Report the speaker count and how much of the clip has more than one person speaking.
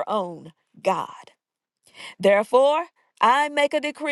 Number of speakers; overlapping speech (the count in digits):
1, no overlap